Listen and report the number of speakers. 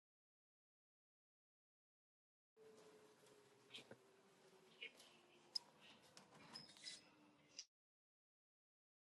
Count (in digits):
0